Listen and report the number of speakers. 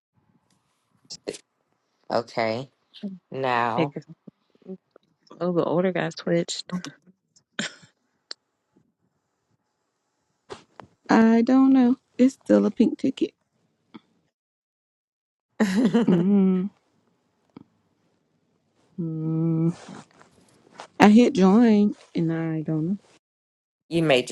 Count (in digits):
3